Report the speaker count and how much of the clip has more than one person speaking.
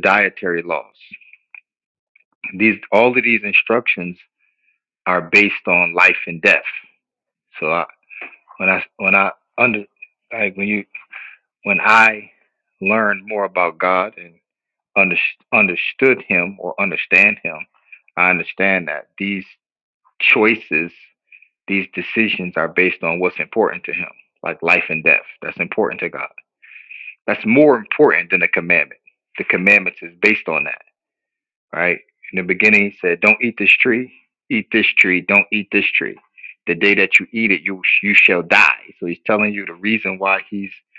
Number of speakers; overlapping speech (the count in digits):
1, no overlap